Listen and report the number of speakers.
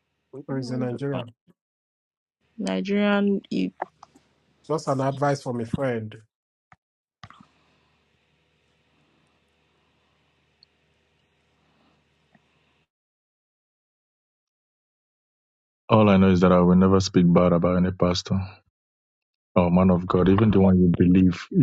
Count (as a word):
three